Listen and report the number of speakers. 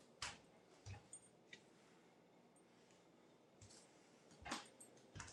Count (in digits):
0